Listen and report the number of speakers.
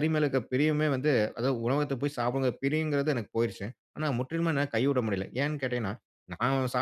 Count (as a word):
one